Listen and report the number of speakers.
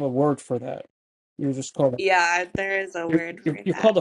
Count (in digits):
2